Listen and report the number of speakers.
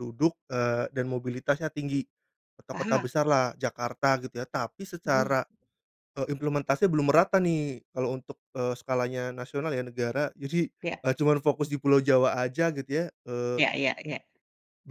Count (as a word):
two